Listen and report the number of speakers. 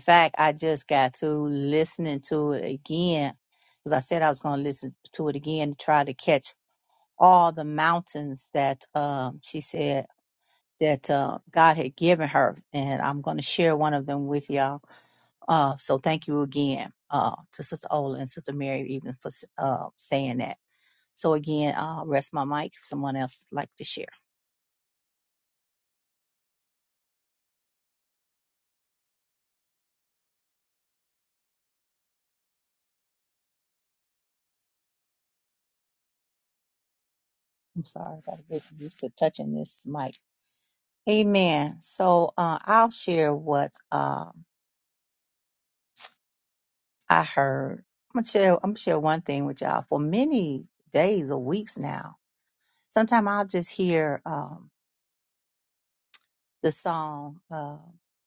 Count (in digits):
1